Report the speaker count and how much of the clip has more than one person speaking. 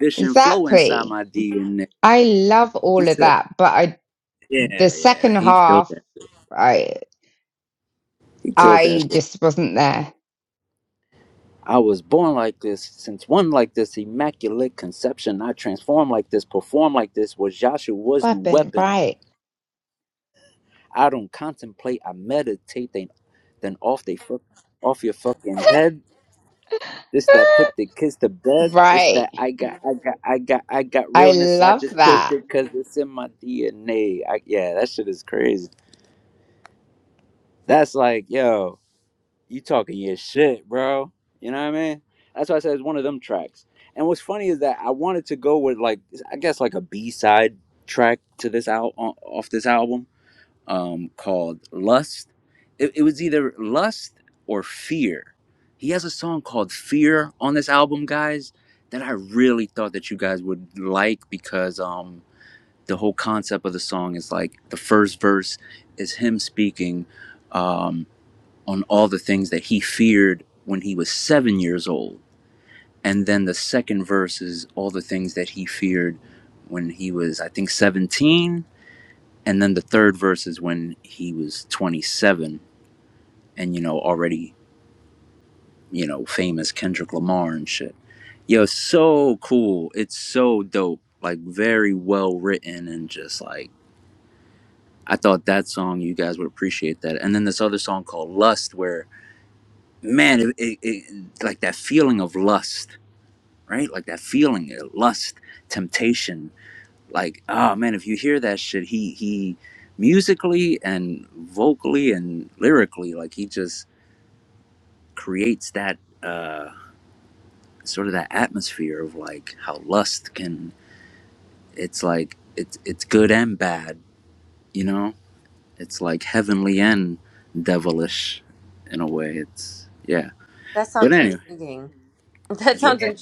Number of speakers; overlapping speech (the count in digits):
3, about 5%